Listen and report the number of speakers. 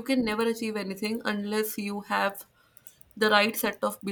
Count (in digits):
1